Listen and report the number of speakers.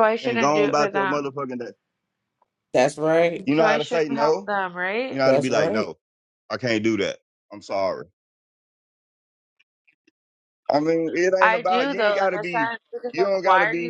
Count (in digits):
3